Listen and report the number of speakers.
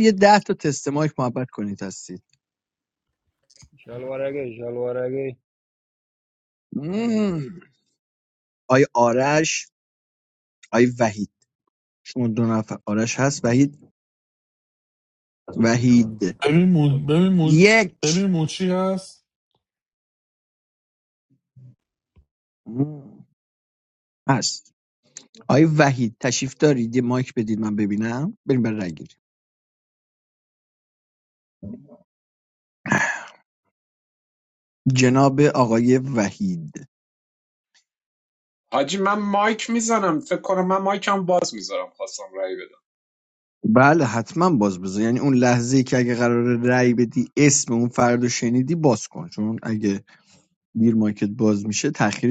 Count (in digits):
4